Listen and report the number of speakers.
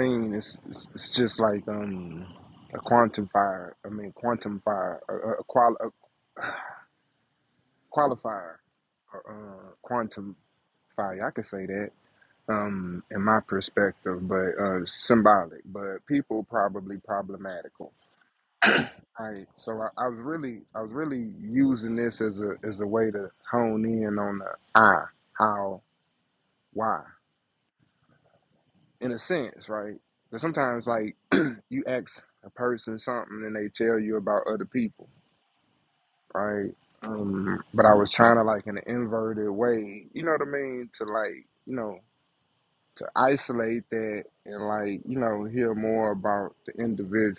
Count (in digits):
1